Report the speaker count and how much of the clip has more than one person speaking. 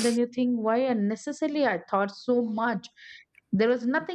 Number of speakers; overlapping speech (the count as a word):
one, no overlap